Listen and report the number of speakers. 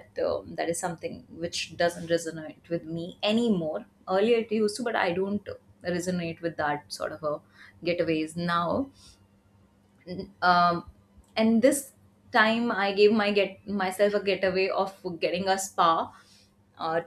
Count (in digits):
1